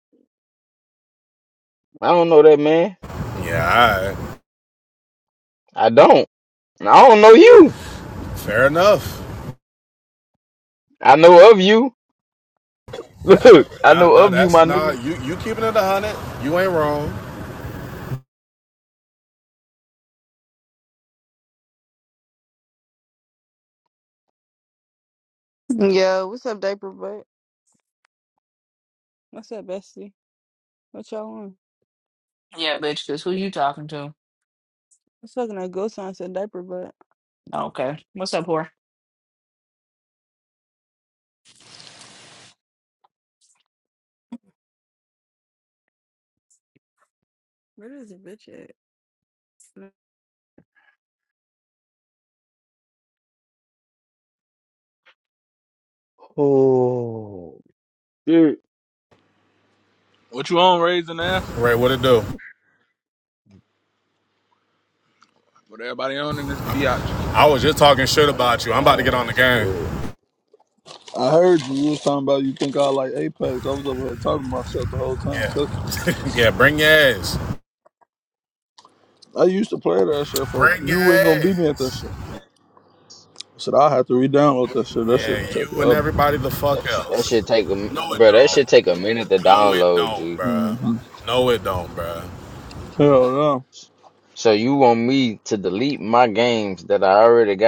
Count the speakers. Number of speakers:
five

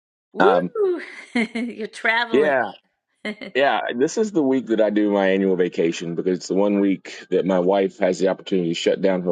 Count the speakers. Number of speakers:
two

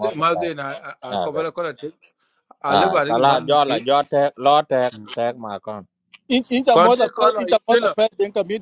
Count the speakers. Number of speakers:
three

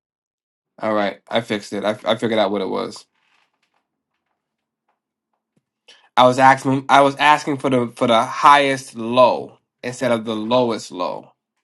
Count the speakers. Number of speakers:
one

